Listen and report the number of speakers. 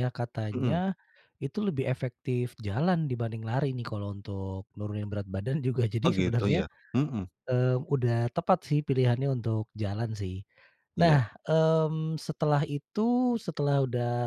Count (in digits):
2